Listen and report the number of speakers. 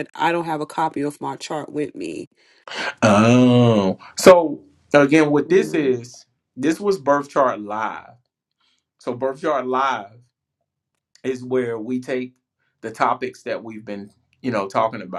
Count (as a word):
two